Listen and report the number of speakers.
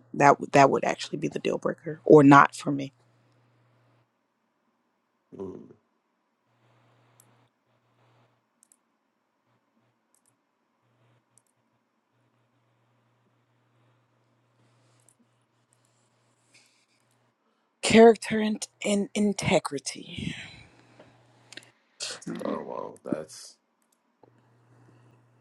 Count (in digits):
2